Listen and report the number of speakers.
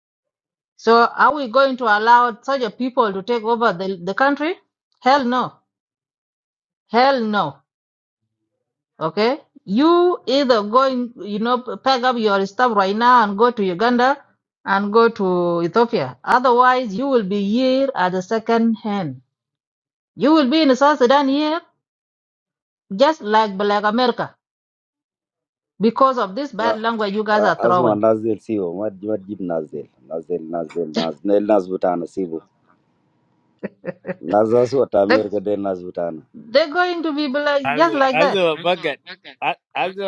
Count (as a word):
three